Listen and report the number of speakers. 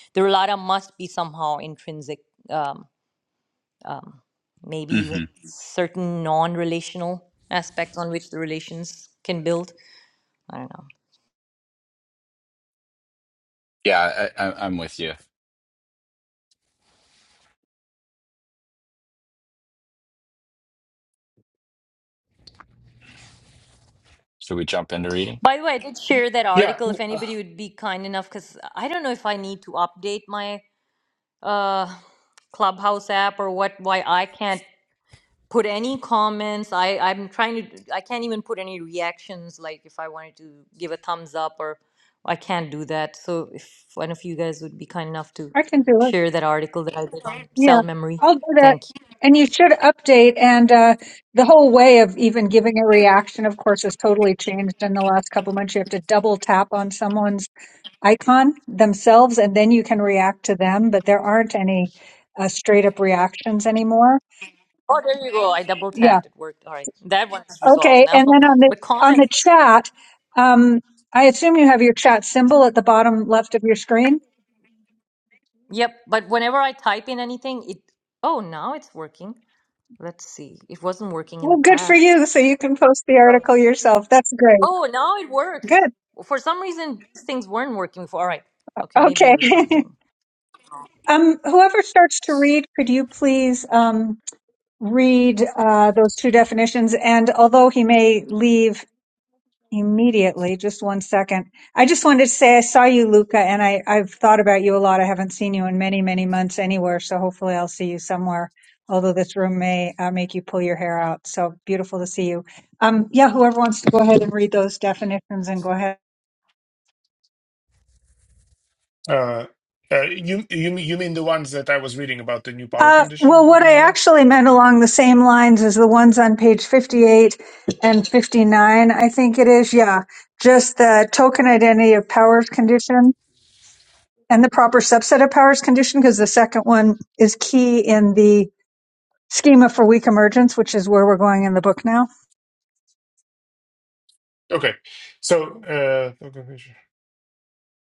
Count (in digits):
4